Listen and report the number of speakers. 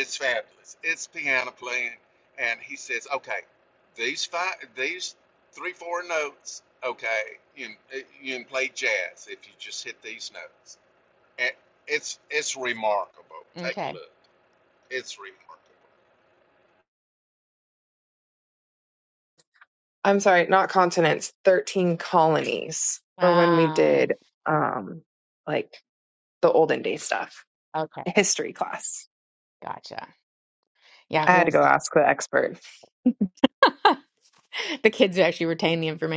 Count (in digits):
3